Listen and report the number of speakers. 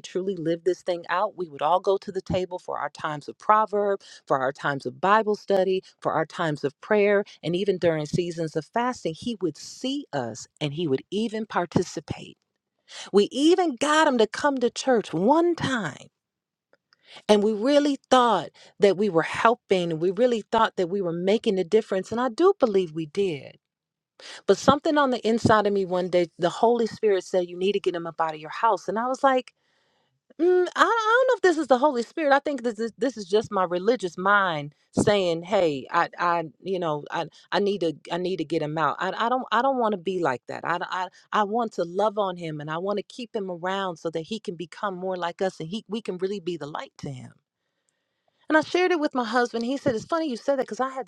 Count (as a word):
one